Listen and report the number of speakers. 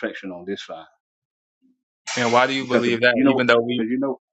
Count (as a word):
two